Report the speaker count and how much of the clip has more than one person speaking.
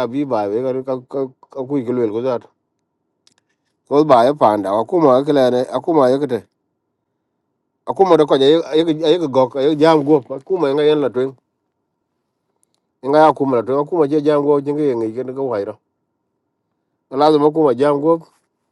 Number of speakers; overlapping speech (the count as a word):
one, no overlap